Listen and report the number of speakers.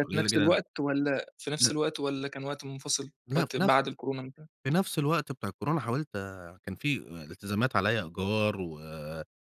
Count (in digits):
2